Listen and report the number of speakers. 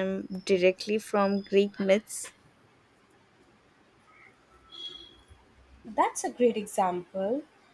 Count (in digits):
2